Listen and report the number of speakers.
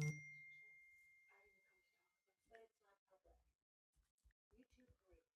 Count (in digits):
0